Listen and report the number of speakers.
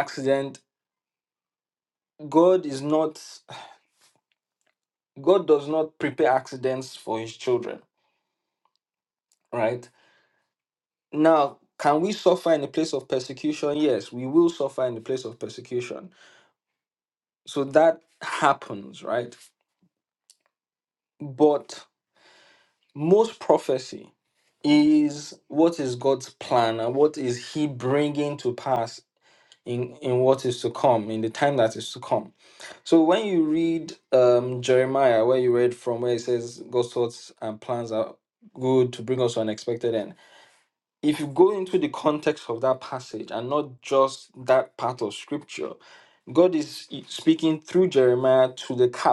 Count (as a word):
one